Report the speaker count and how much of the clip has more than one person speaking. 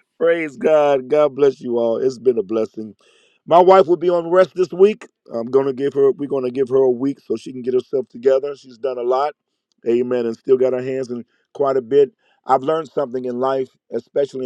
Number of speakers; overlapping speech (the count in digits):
1, no overlap